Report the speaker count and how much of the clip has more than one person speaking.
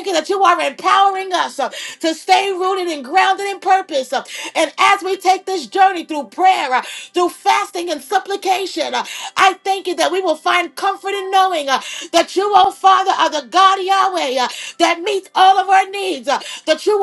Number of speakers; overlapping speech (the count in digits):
1, no overlap